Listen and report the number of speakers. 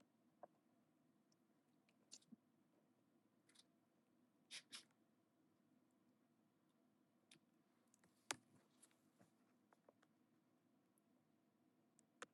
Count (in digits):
0